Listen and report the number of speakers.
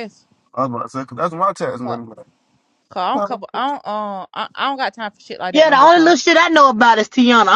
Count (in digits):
3